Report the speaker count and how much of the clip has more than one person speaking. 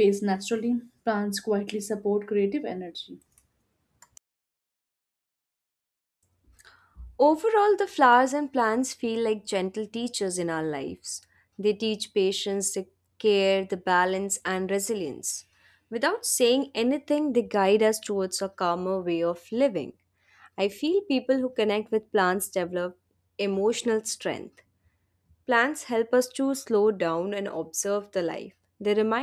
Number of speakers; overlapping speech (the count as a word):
two, no overlap